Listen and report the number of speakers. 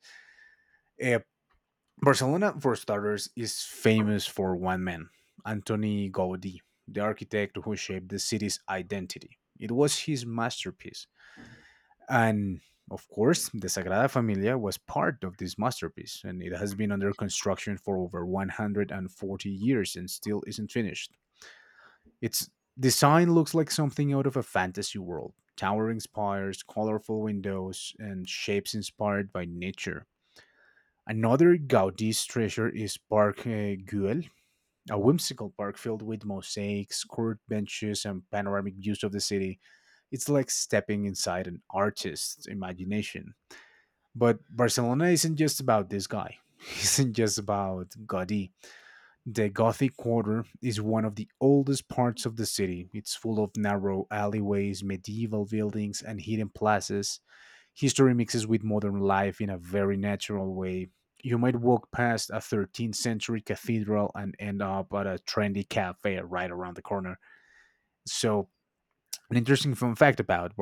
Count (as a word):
one